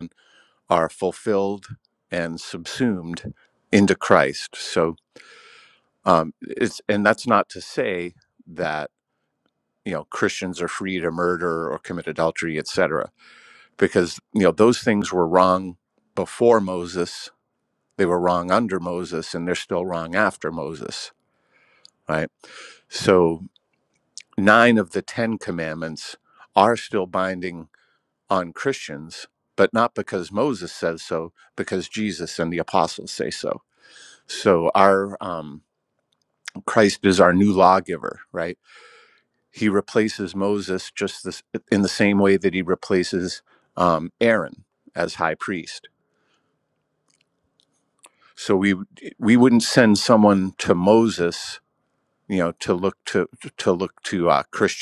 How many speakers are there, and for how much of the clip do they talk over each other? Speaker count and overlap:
1, no overlap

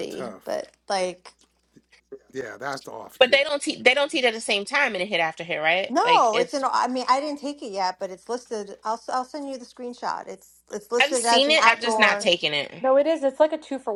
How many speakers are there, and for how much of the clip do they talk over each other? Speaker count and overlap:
4, about 18%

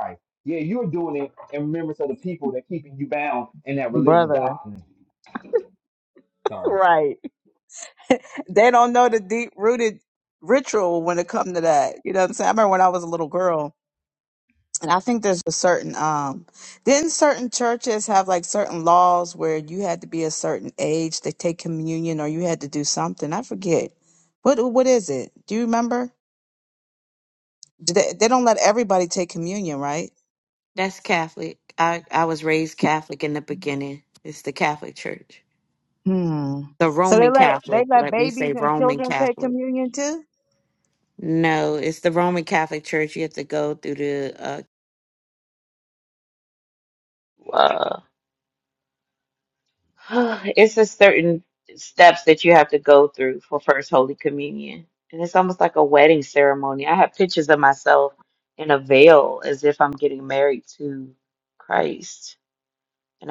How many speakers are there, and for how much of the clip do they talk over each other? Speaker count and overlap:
3, about 5%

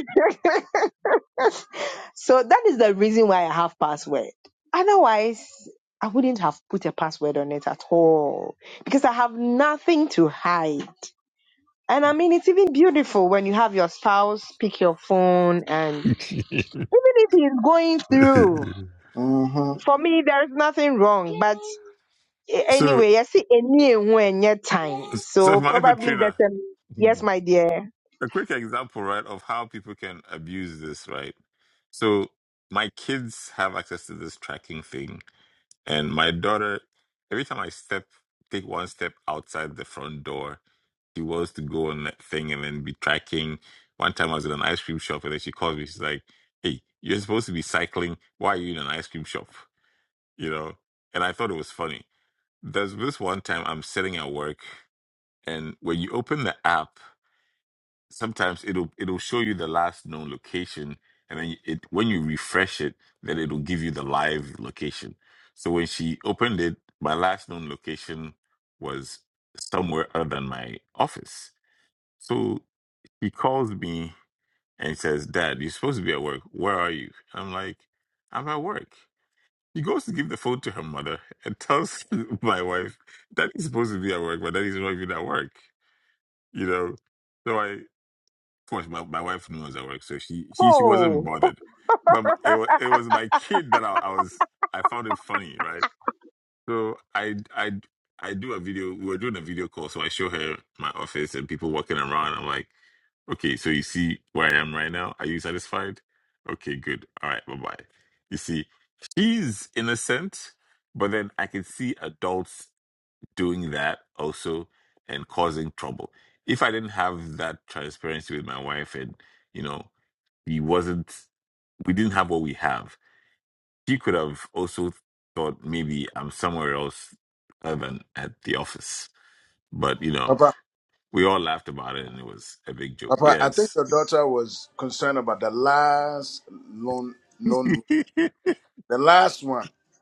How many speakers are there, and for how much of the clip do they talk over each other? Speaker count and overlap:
3, about 2%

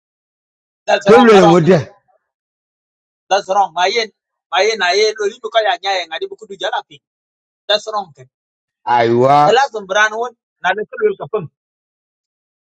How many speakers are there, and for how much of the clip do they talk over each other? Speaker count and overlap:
2, about 7%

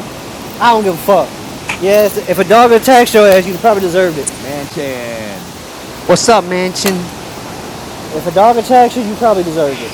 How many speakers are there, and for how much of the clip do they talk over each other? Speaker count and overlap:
3, no overlap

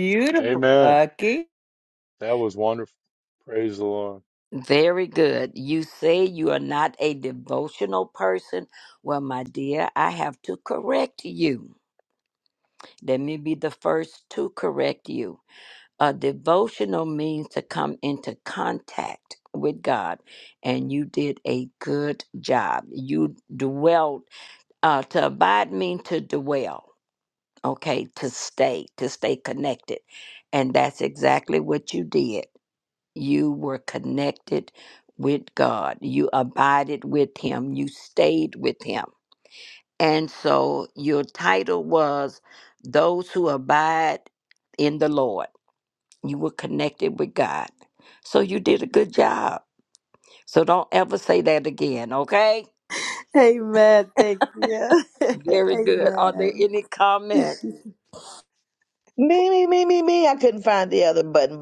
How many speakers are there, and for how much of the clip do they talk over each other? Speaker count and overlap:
5, about 3%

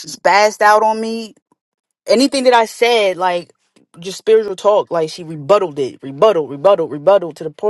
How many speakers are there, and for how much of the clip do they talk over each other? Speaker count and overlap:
1, no overlap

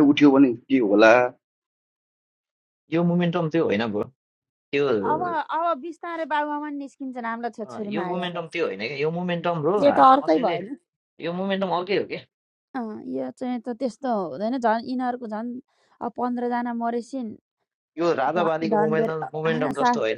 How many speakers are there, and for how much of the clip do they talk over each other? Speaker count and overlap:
3, about 13%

